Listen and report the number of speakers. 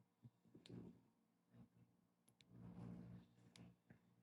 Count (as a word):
zero